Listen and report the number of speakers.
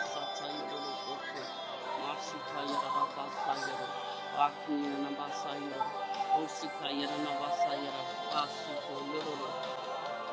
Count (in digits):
0